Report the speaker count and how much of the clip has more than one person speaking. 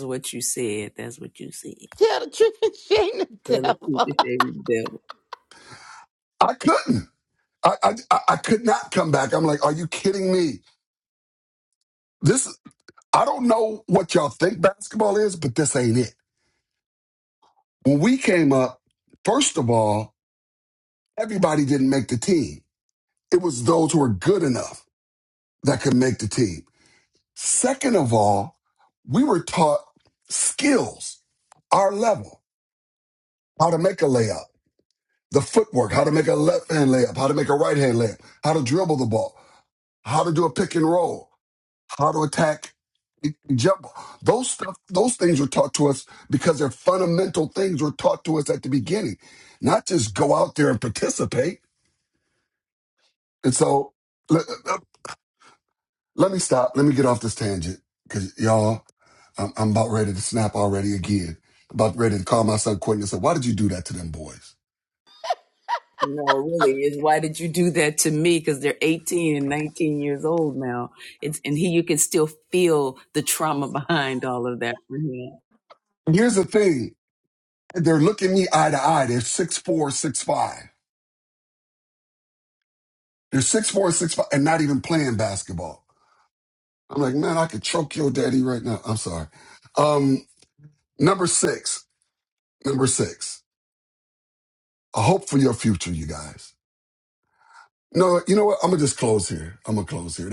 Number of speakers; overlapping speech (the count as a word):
three, under 1%